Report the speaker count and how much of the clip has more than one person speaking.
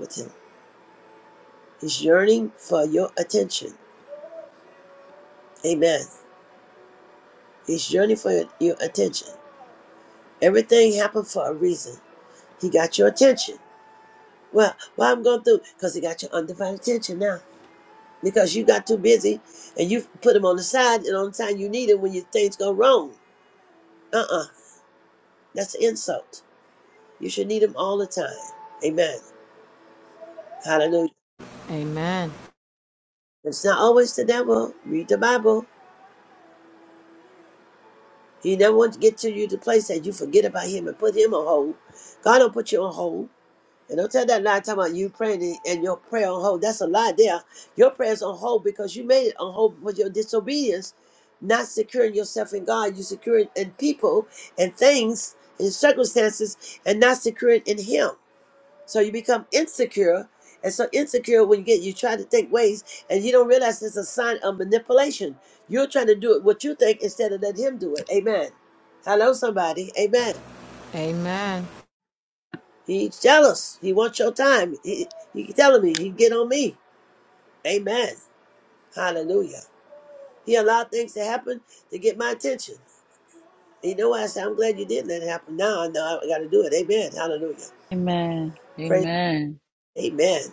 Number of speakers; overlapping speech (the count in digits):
3, under 1%